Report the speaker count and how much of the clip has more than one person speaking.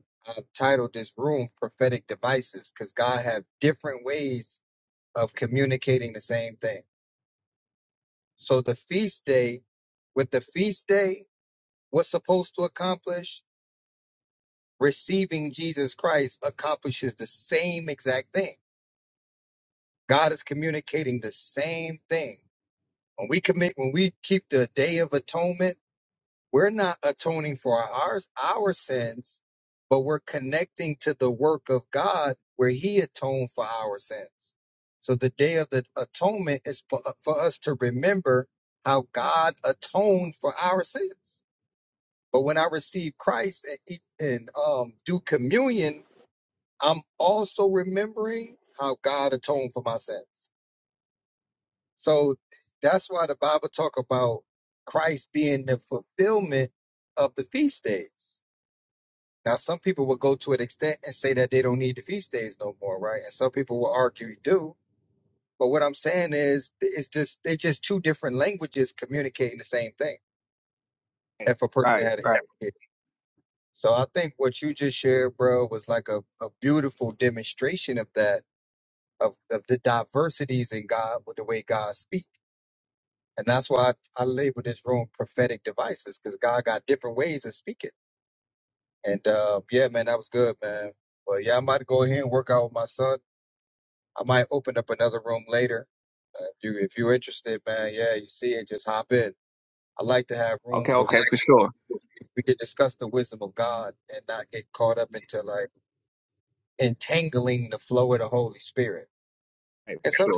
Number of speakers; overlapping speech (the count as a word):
two, about 1%